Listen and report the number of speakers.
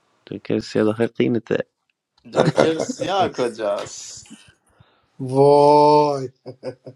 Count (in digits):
3